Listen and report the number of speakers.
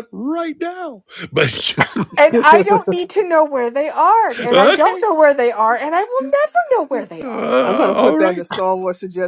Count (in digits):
3